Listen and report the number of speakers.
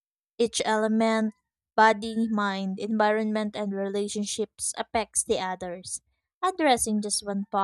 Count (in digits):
1